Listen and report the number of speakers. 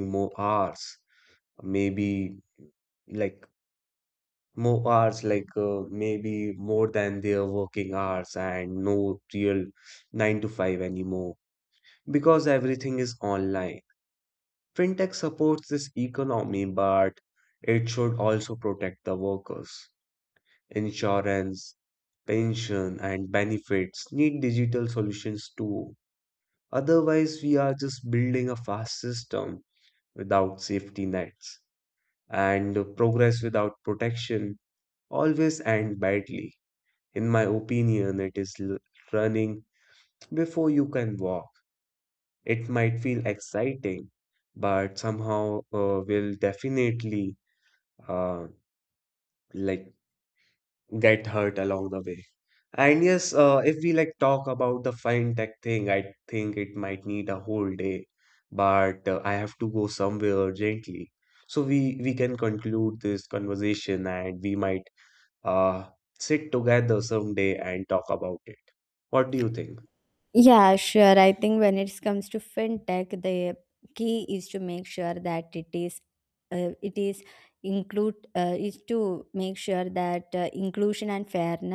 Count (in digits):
2